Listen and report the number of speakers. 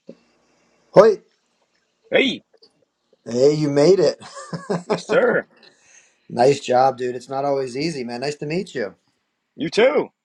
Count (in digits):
2